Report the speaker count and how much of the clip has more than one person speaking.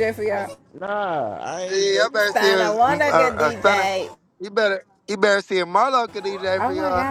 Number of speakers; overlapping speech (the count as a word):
three, about 34%